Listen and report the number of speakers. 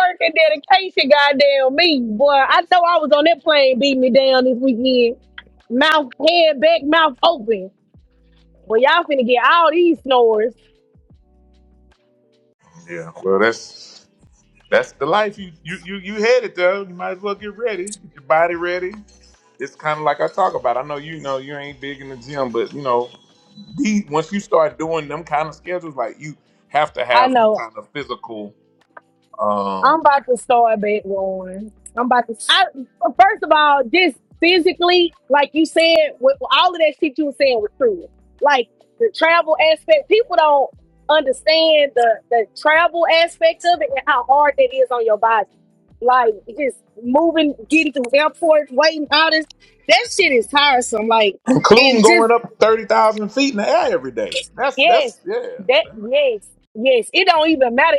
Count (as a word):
two